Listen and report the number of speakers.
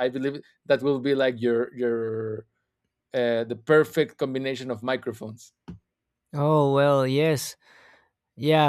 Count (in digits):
2